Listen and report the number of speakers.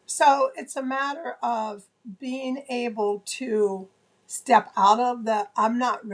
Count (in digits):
1